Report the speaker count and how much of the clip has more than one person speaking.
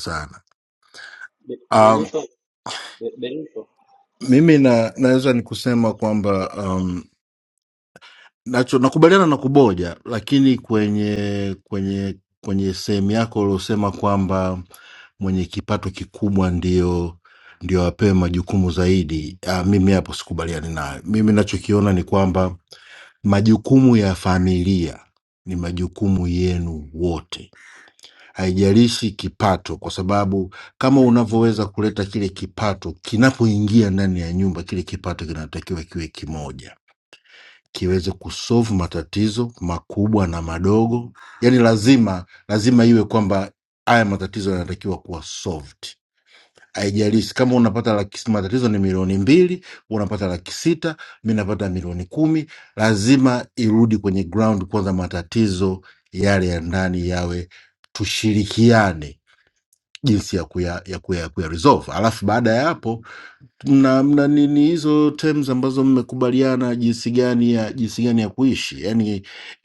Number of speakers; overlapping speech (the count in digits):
2, about 1%